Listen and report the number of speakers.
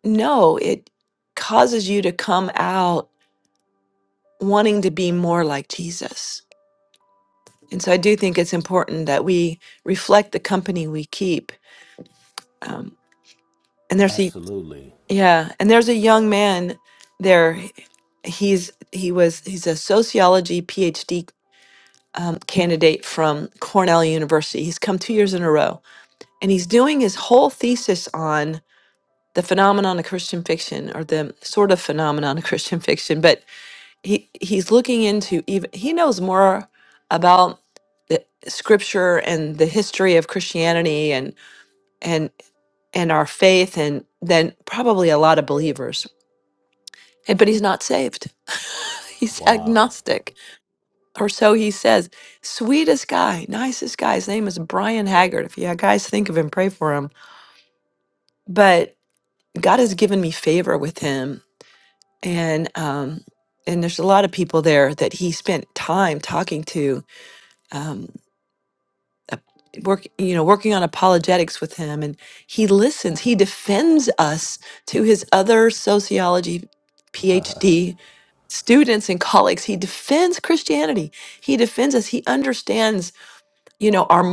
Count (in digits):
2